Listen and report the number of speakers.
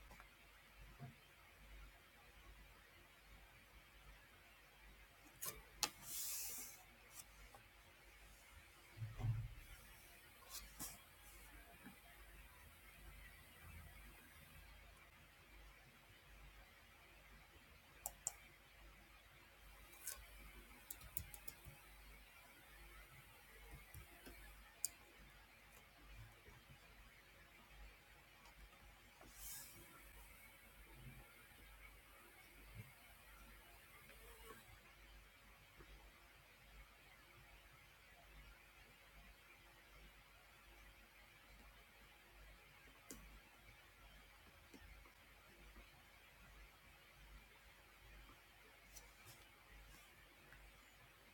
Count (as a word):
zero